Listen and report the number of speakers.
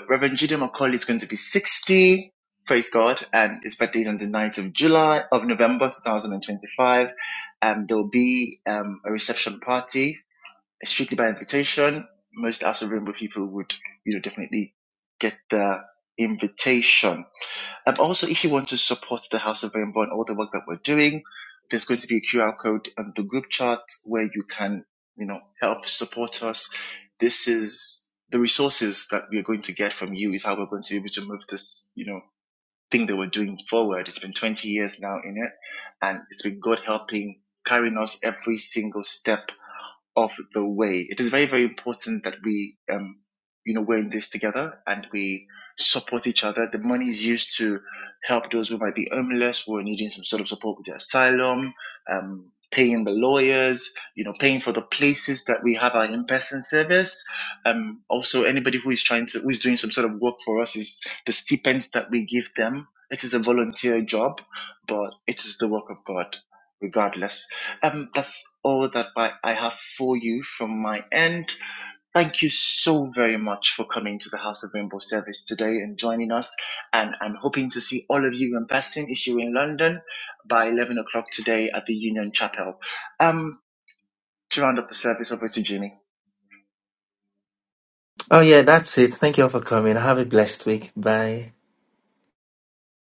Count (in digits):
2